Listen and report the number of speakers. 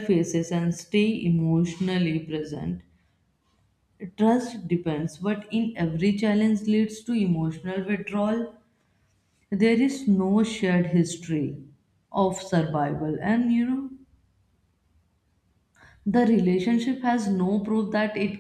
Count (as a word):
one